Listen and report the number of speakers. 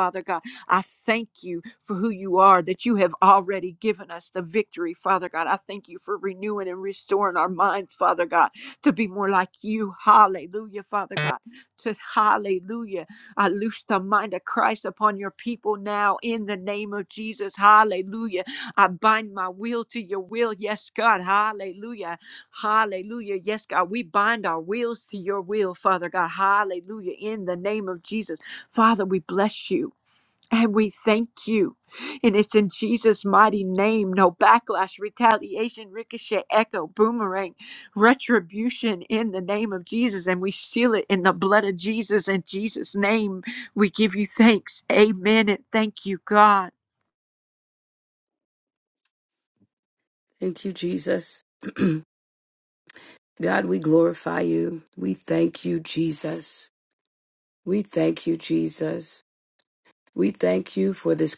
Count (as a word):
two